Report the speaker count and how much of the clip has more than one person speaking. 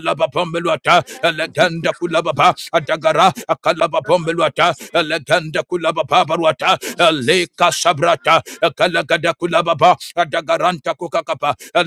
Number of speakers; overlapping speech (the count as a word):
one, no overlap